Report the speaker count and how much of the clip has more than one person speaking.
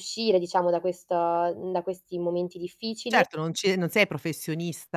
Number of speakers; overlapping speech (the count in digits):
2, about 3%